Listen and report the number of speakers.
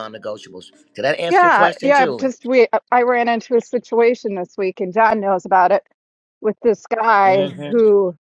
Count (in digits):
2